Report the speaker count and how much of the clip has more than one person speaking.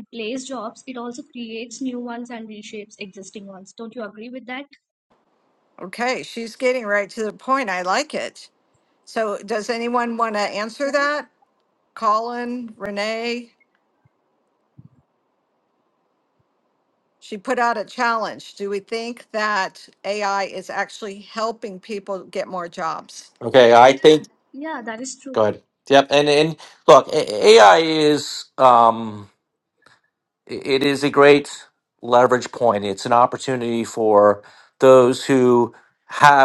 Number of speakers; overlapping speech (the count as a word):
three, about 1%